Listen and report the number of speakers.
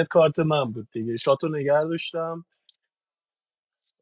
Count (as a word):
one